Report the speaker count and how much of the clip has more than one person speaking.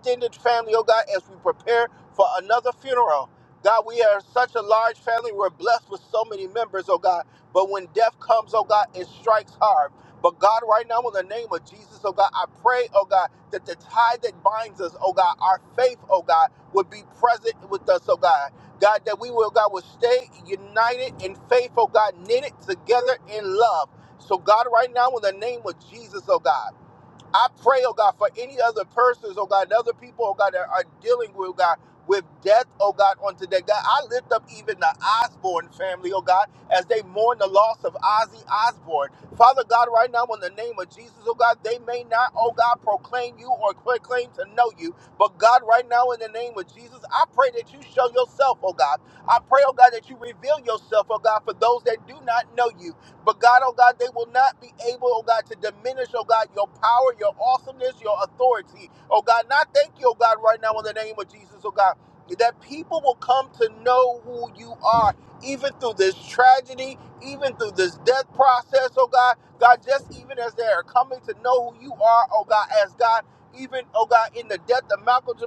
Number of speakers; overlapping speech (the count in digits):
1, no overlap